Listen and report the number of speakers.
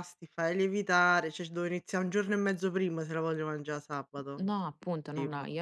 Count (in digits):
2